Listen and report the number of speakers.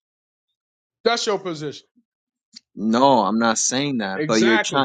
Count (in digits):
2